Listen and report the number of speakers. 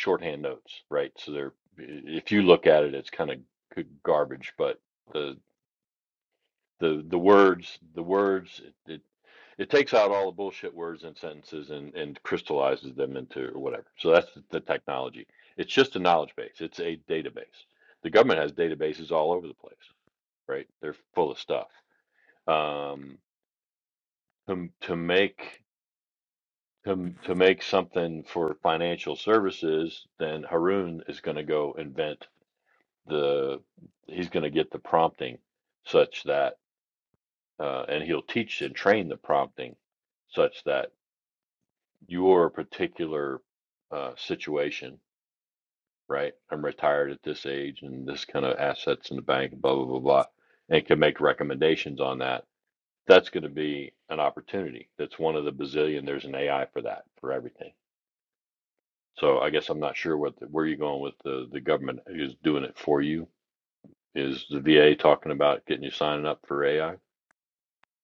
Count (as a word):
one